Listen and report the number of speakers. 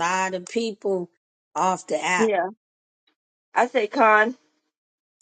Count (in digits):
2